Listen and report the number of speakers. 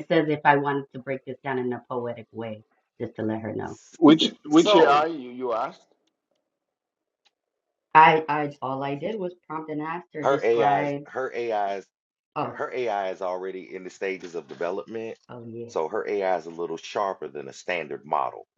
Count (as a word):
three